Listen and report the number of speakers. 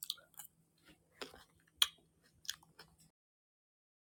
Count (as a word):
zero